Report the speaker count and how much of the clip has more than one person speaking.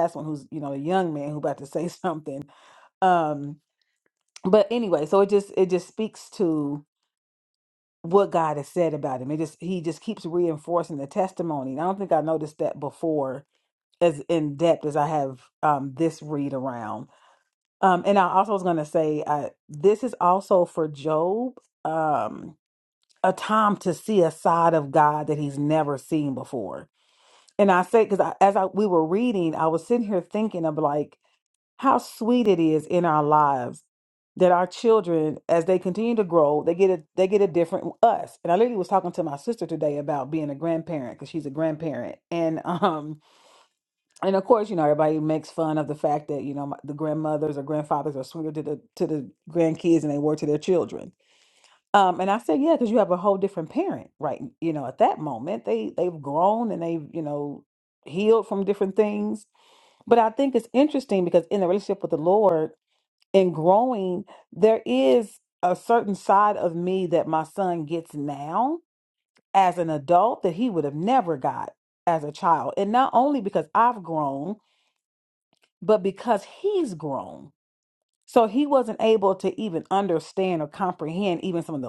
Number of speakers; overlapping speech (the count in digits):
1, no overlap